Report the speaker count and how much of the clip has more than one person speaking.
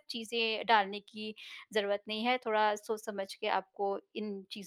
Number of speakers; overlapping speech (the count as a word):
one, no overlap